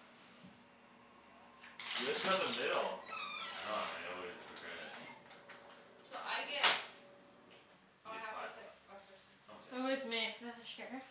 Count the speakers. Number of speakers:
four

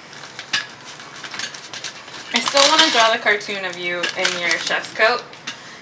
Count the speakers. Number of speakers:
one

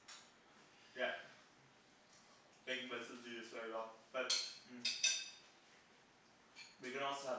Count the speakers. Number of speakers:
one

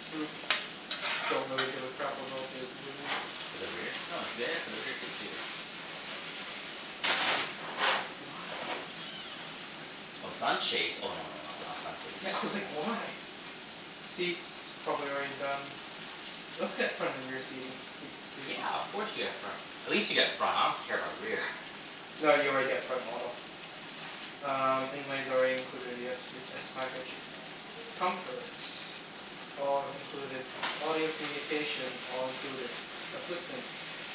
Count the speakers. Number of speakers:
two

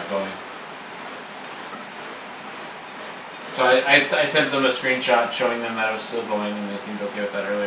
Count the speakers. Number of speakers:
one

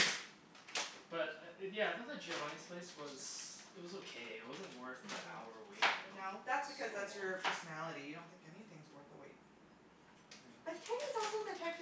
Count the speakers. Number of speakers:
three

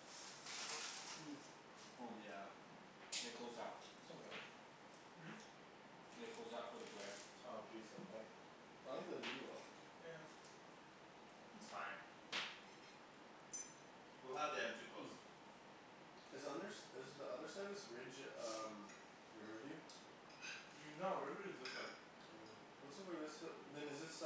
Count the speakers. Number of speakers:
three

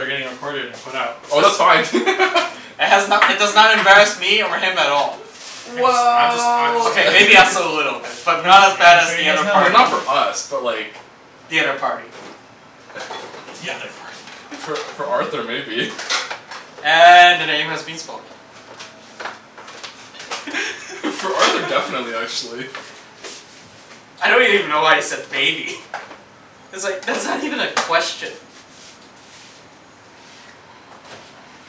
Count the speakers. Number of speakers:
three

